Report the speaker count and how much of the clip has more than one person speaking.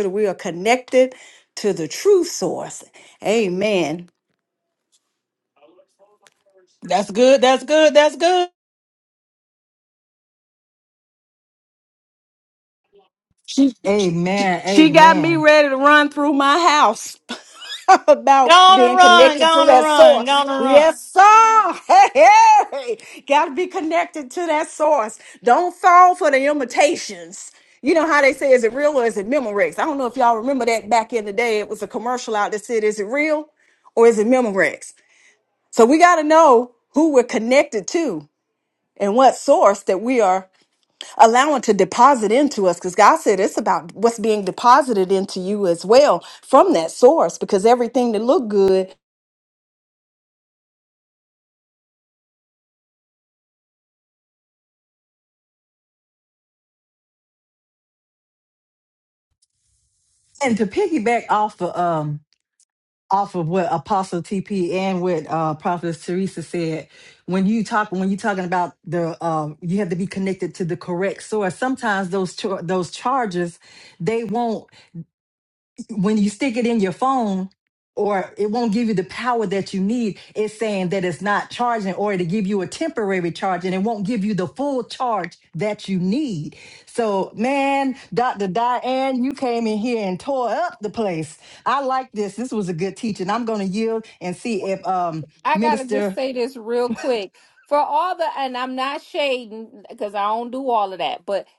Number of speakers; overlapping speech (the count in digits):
4, about 3%